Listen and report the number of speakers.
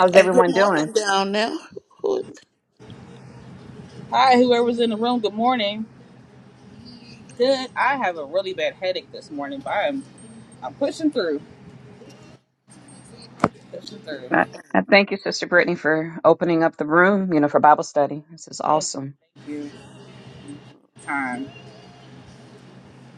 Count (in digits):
3